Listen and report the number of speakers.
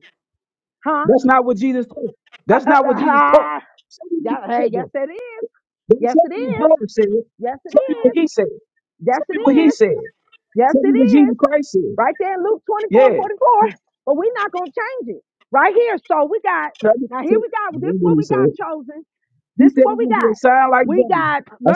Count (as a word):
two